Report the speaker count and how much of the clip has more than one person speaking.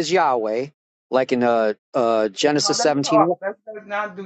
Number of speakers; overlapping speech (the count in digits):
2, about 22%